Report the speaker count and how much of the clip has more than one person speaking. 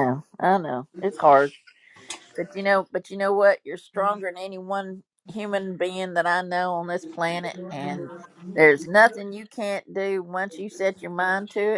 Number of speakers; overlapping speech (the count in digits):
1, no overlap